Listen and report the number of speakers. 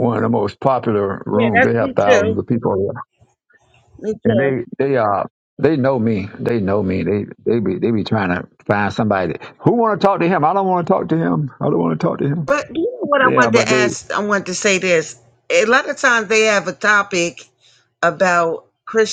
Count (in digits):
2